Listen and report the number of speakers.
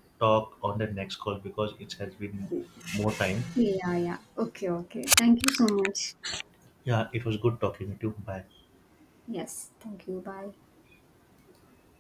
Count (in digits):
2